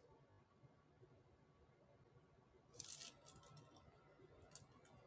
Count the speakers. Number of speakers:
zero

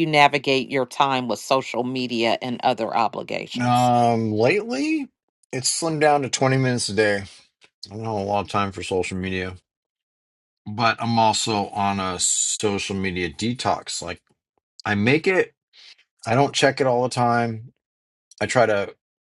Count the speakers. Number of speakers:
two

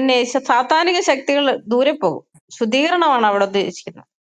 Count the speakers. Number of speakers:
one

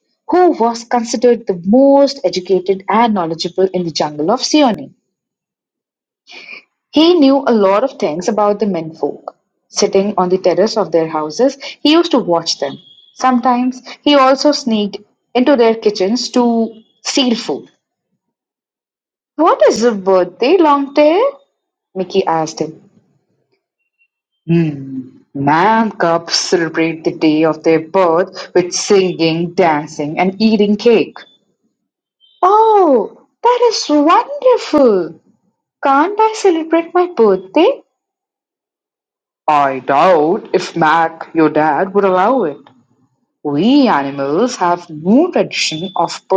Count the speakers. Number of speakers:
one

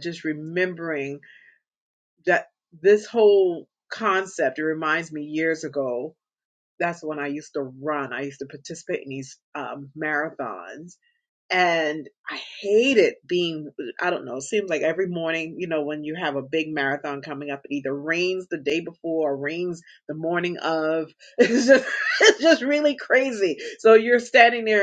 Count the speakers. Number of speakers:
one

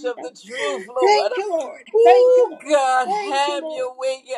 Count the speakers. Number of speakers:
two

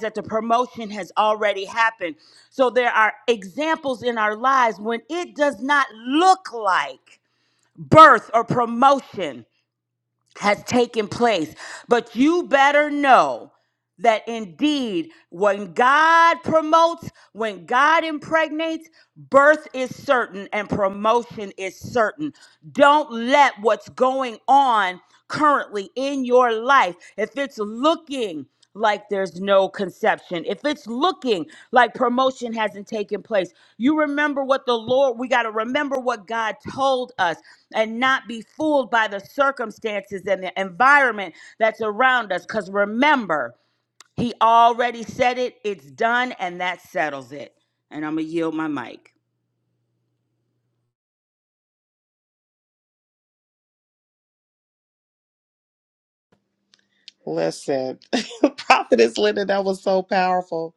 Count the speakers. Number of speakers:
two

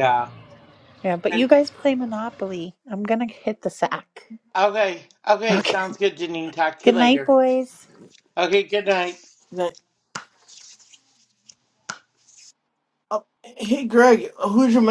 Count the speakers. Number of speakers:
three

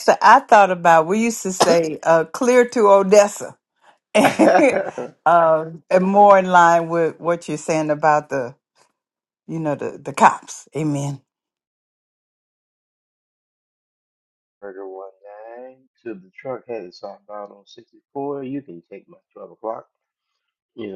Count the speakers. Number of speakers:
two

